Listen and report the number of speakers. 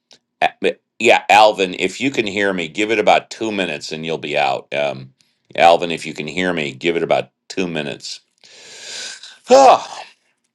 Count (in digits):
1